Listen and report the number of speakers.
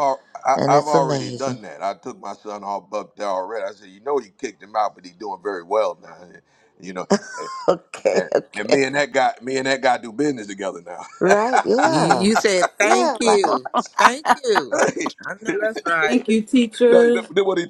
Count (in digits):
4